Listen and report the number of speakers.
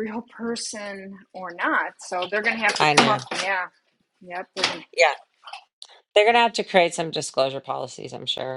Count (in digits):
2